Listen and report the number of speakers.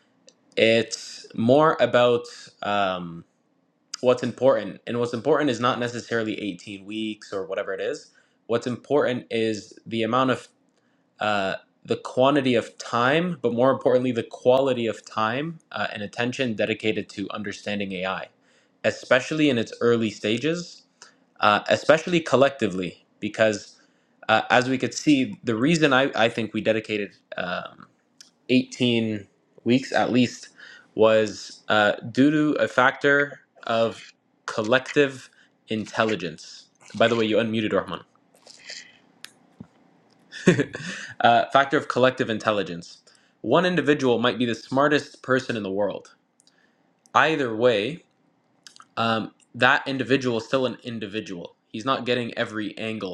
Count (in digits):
1